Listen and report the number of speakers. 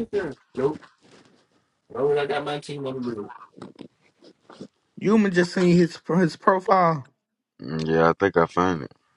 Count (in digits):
3